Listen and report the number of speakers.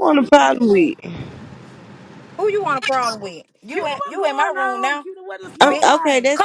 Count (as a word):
three